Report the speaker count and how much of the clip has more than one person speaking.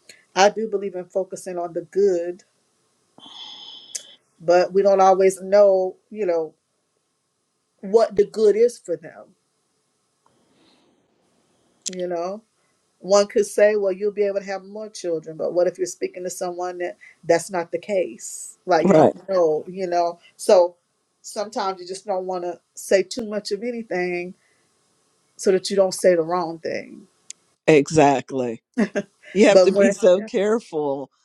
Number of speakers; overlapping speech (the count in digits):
2, about 4%